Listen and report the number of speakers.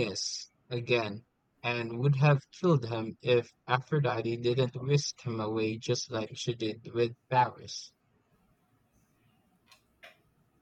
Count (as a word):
one